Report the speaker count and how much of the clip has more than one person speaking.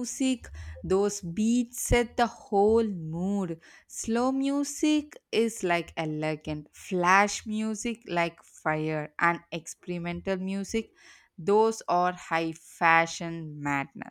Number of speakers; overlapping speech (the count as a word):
one, no overlap